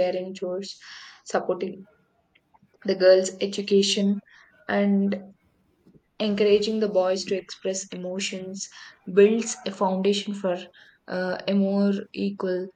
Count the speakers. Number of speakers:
one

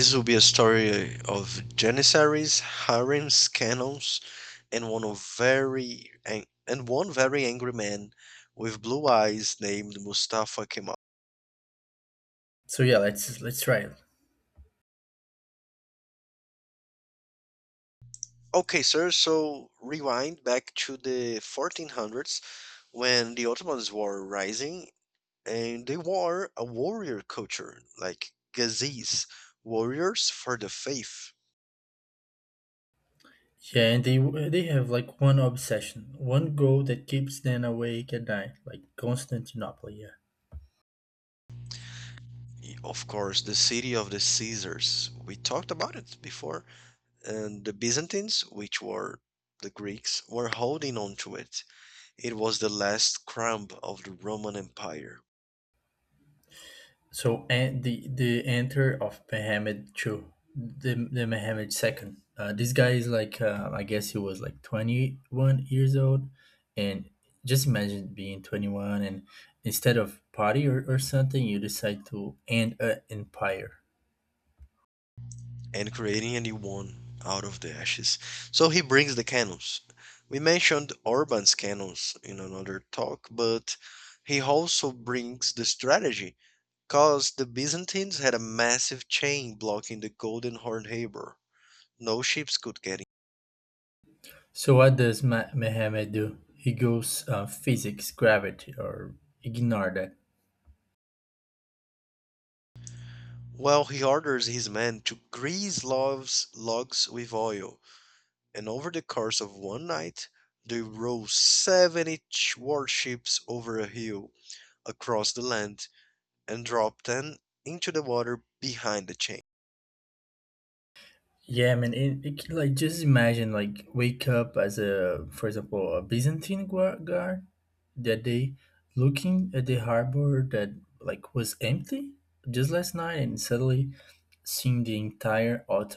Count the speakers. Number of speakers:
two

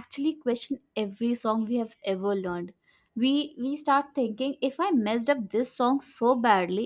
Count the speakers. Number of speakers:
one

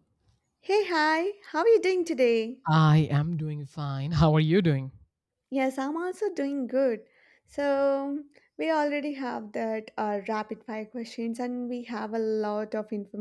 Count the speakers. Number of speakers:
two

